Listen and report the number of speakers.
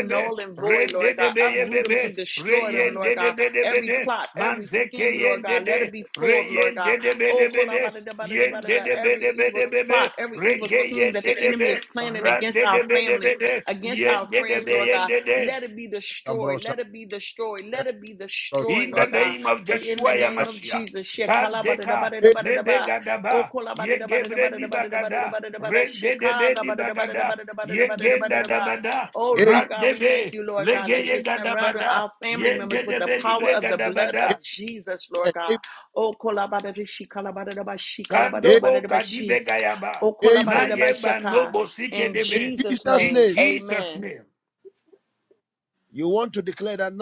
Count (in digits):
3